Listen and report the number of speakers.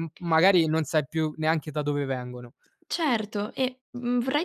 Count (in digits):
2